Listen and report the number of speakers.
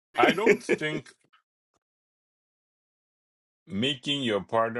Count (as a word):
one